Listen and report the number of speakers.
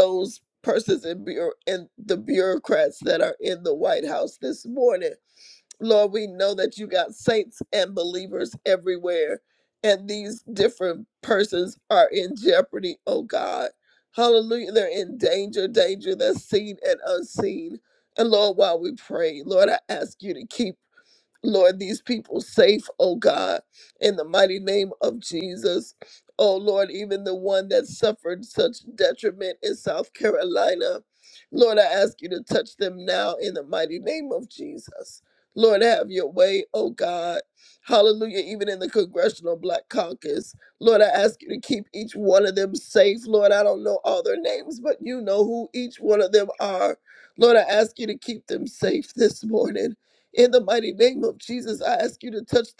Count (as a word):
one